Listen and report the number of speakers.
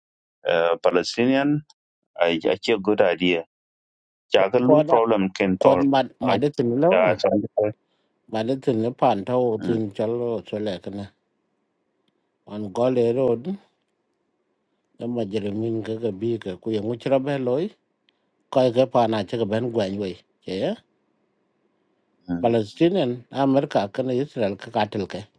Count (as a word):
two